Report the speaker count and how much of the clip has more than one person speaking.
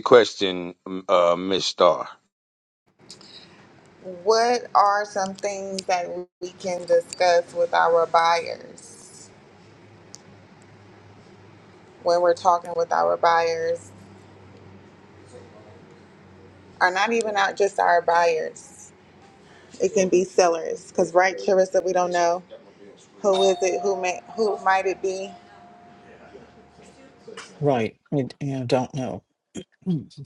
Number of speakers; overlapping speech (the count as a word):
three, no overlap